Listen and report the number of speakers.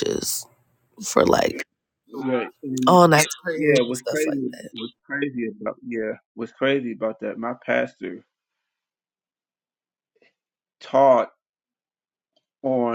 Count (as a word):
two